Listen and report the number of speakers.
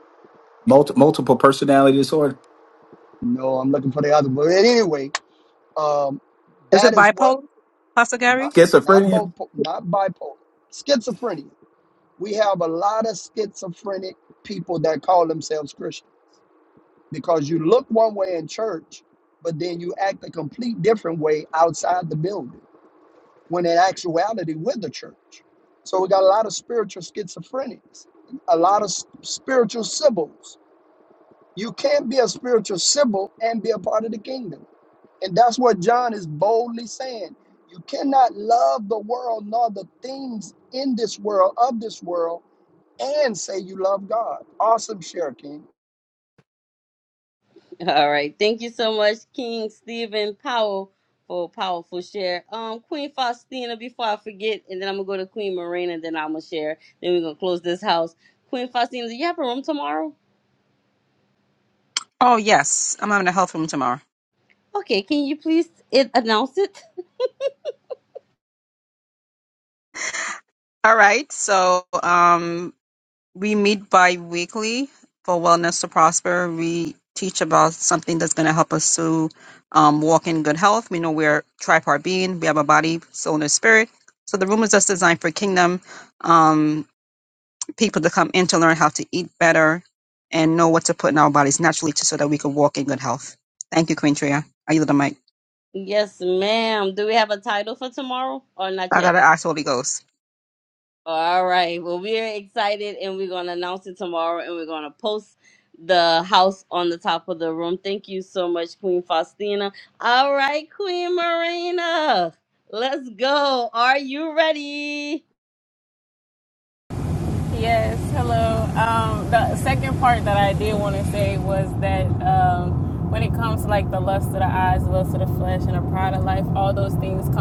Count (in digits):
5